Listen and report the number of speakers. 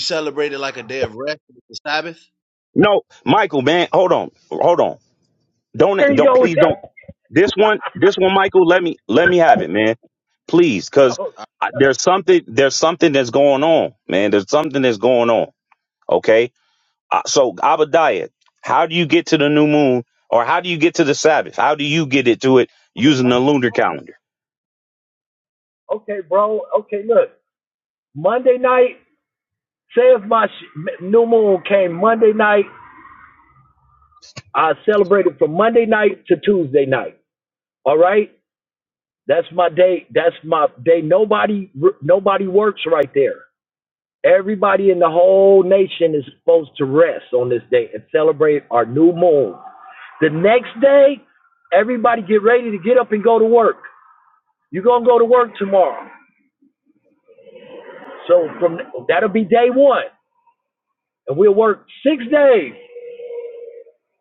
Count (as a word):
three